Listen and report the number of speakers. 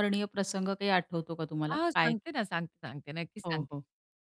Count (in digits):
2